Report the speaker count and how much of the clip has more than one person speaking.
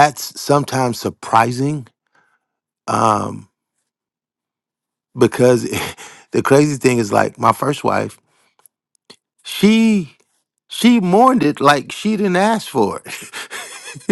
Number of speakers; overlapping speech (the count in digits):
1, no overlap